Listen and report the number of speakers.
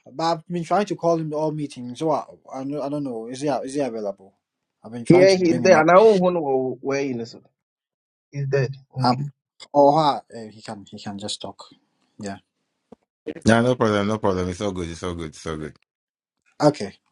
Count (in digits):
3